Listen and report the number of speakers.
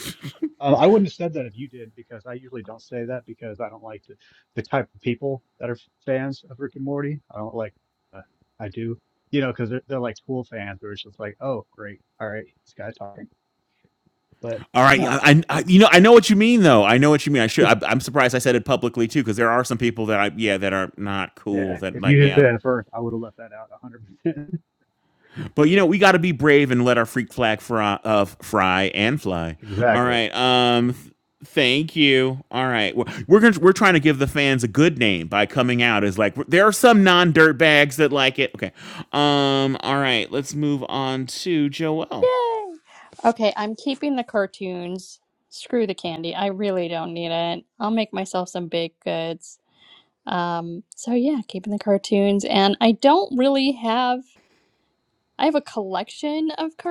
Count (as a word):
three